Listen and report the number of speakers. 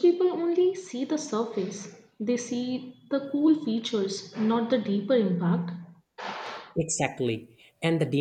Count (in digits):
2